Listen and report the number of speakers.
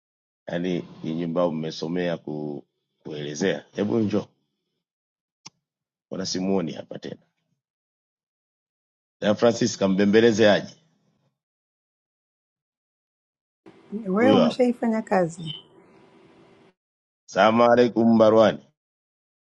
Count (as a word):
two